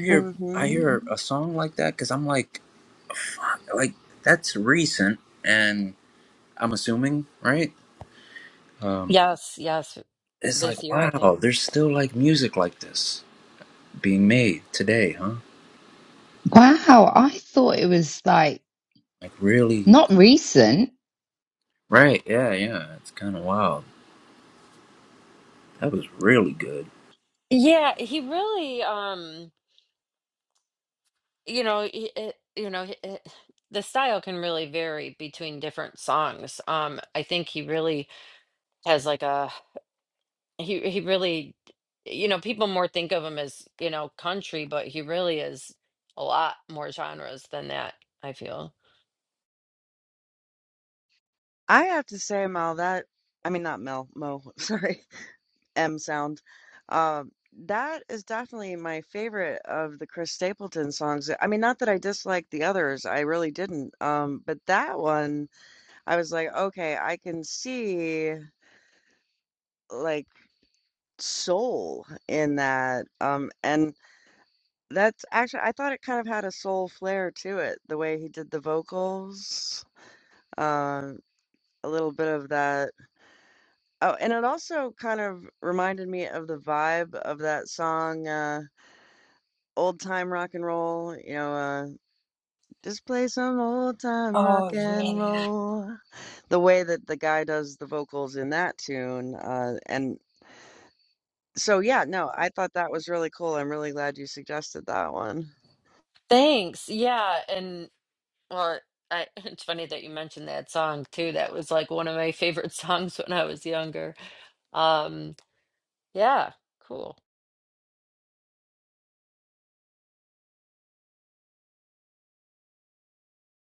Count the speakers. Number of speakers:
4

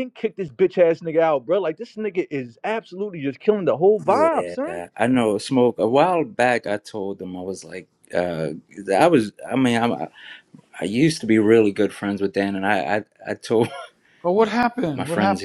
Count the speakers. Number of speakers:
3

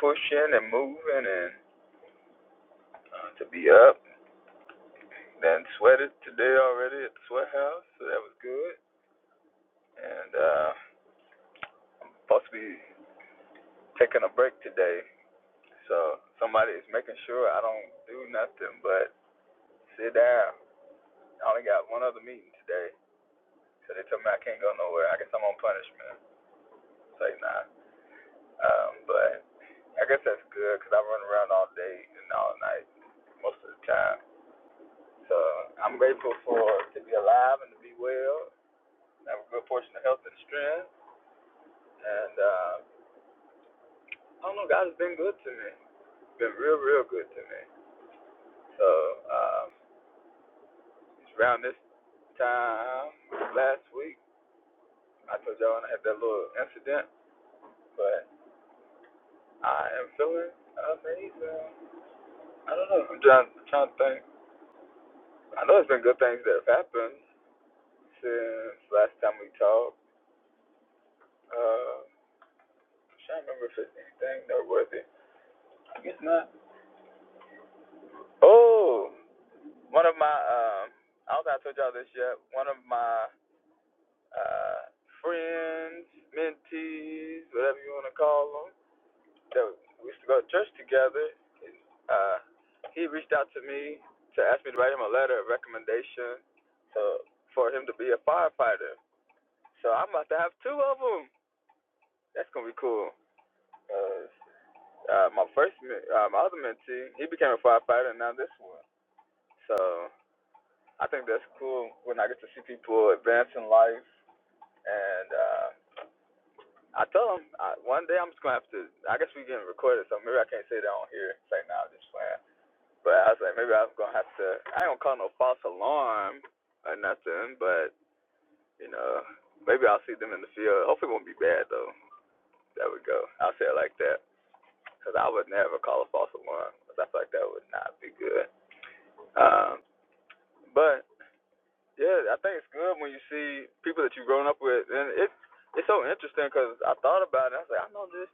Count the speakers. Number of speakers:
1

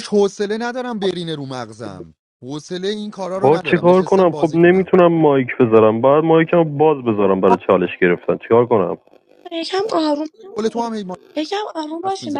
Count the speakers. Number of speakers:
3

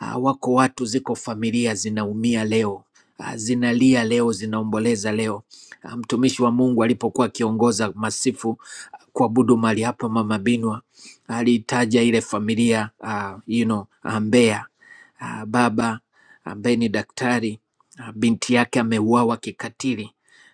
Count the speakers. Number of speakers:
1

